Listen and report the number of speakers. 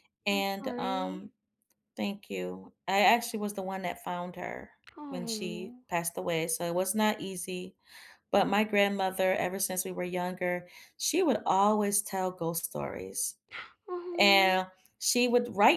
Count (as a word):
two